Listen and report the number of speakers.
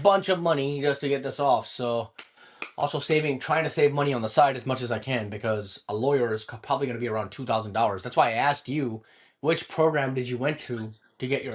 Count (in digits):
1